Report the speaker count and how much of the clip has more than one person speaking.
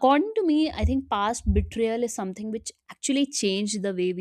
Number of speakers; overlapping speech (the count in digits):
1, no overlap